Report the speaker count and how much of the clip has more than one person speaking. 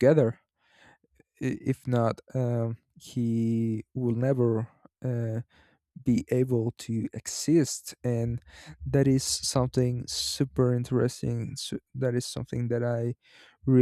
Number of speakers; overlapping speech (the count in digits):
1, no overlap